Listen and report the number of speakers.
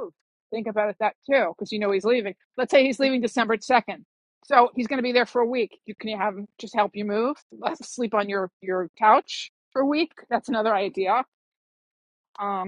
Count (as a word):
one